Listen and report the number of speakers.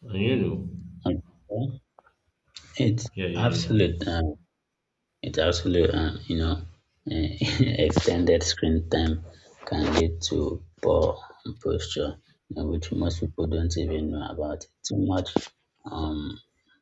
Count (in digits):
2